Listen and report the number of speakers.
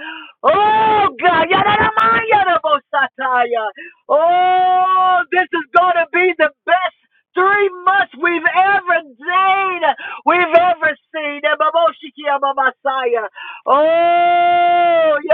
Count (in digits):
1